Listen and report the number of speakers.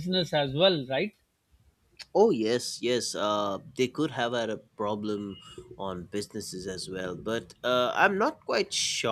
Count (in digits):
2